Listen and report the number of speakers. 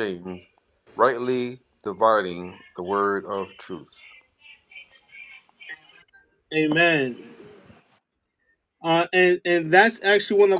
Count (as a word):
two